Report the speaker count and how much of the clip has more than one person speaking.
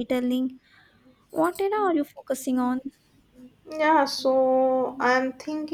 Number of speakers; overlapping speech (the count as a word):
two, no overlap